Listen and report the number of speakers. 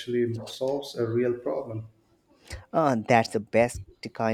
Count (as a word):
two